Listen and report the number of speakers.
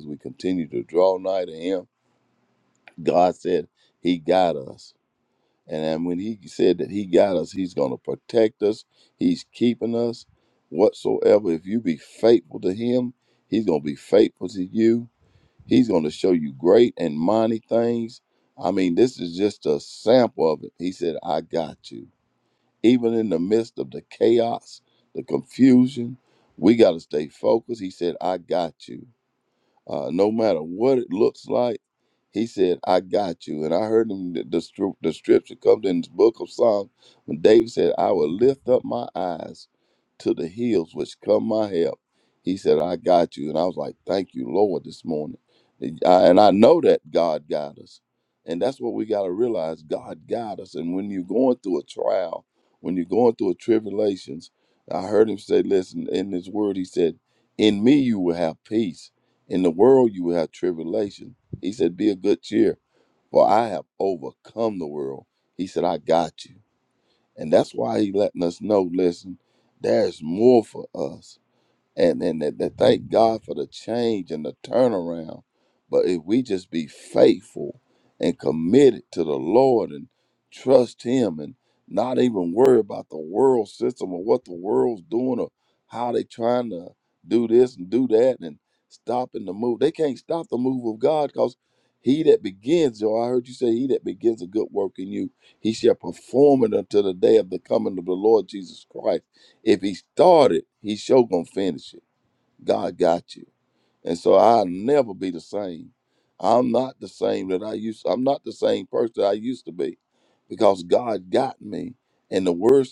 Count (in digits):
1